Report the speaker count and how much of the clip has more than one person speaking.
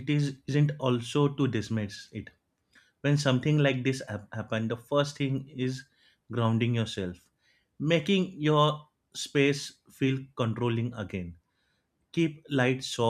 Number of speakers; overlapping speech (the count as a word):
one, no overlap